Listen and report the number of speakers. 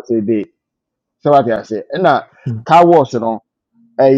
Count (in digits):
1